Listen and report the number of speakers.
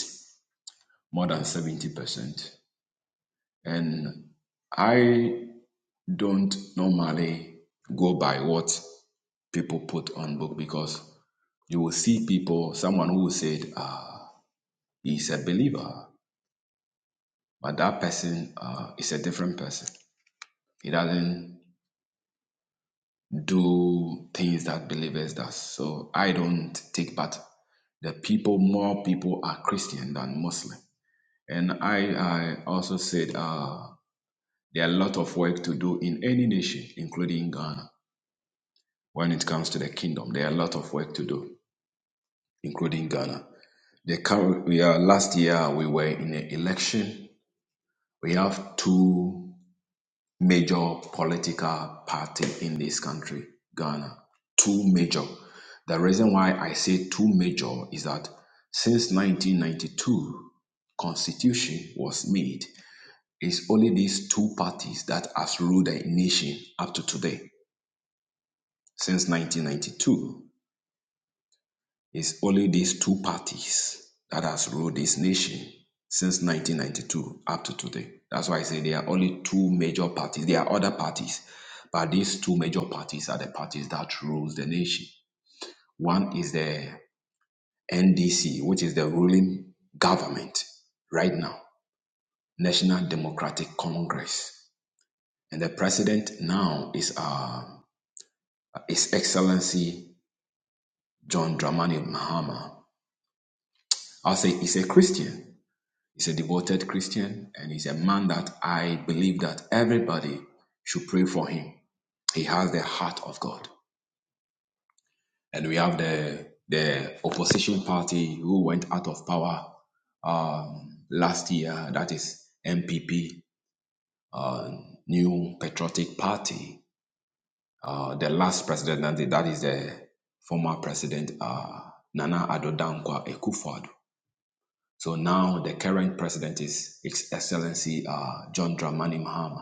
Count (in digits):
1